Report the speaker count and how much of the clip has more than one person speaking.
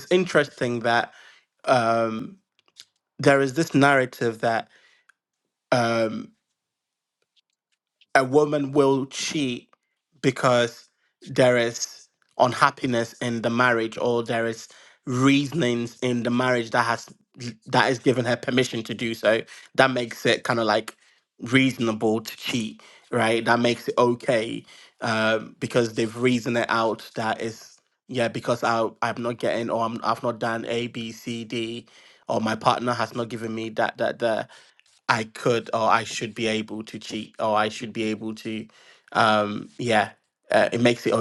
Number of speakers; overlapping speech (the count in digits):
1, no overlap